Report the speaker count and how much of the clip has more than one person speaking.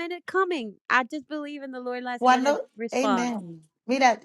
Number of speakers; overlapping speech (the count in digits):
2, about 25%